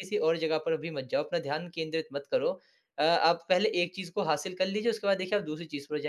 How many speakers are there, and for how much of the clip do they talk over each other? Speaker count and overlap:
1, no overlap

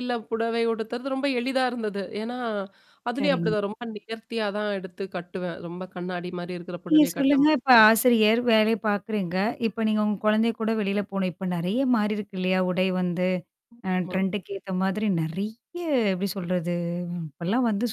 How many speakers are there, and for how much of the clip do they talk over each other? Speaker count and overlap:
2, about 6%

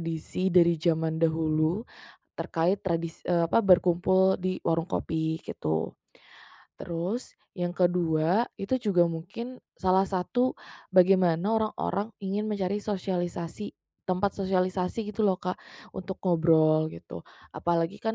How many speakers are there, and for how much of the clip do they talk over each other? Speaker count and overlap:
1, no overlap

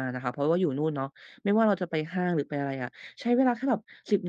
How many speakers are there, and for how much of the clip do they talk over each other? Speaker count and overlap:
1, no overlap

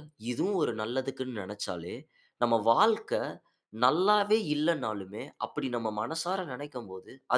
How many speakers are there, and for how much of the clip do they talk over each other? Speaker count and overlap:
1, no overlap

